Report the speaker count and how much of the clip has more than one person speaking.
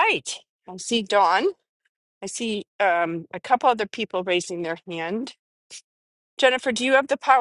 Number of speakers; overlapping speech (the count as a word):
one, no overlap